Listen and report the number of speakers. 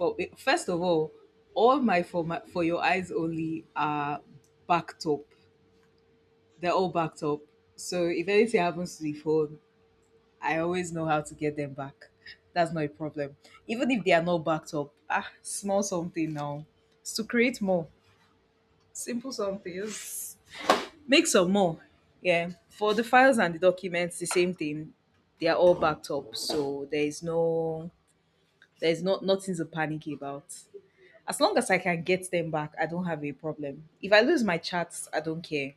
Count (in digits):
1